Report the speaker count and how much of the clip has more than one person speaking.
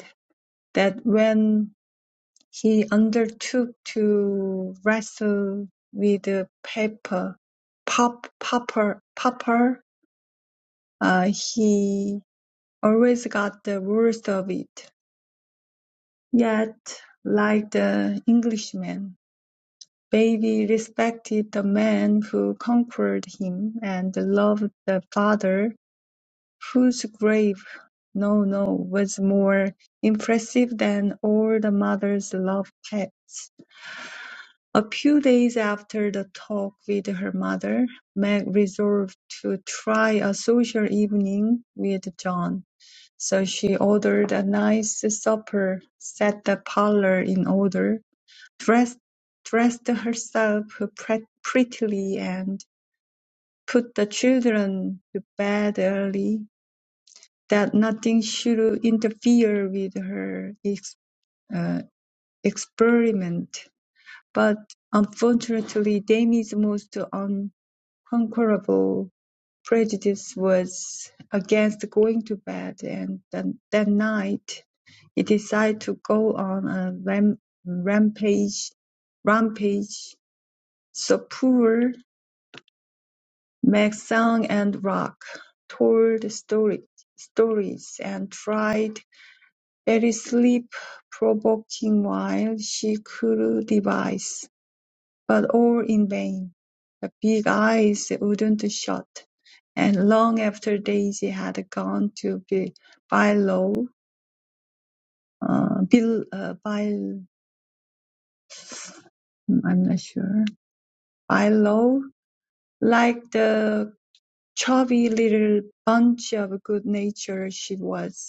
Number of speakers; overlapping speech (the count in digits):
1, no overlap